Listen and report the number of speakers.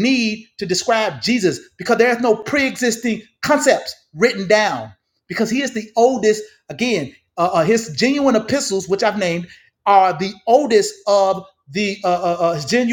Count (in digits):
1